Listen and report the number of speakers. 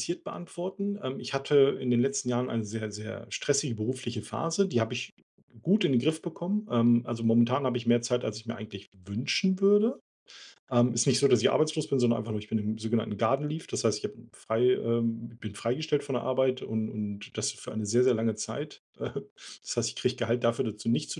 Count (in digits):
1